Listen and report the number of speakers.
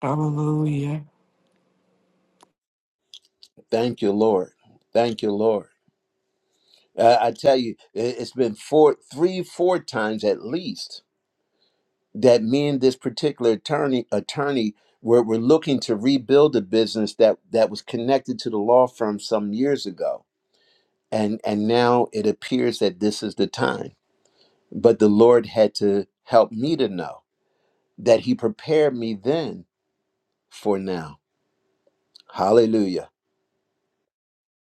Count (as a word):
two